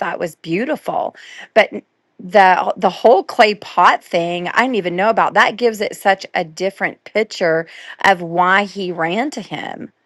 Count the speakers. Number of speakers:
1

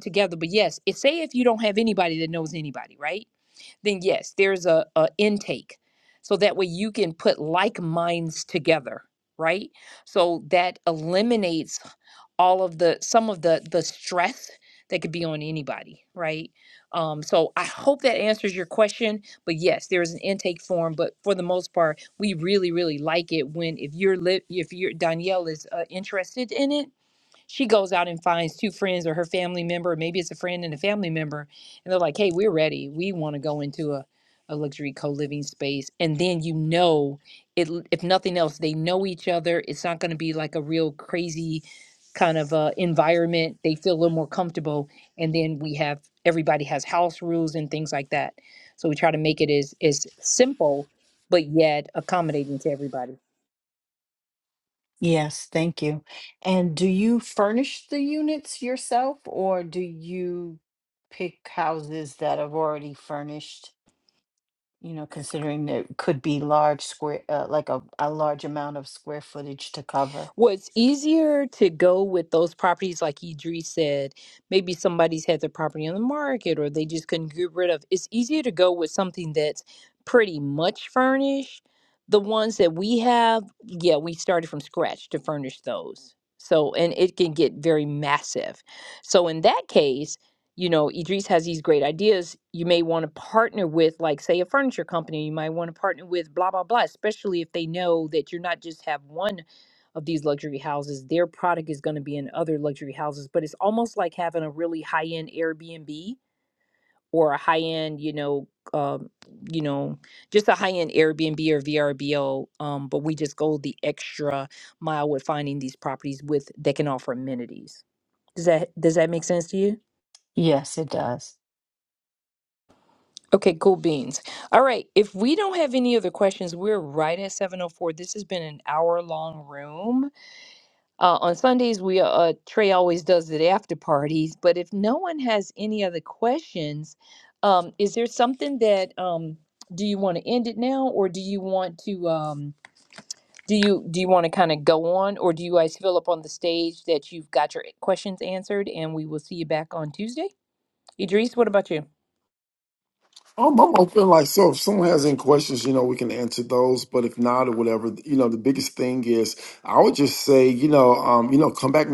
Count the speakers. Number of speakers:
3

